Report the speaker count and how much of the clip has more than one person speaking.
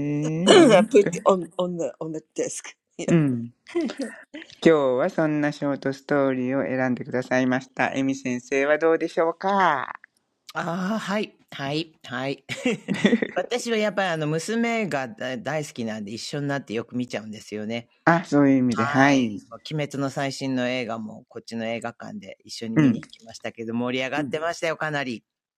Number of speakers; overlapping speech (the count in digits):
3, about 7%